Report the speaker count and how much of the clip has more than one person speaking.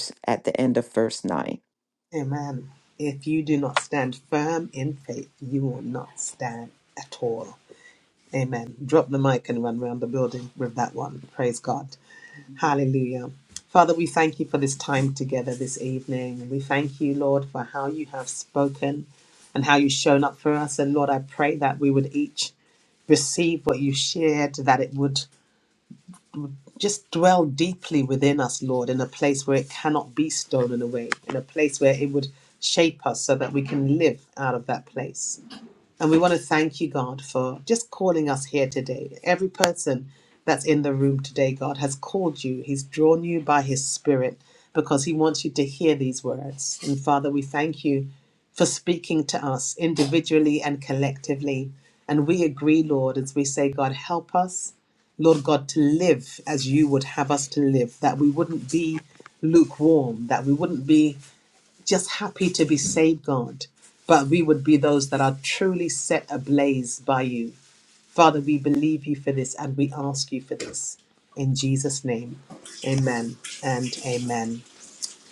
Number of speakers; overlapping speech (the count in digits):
2, no overlap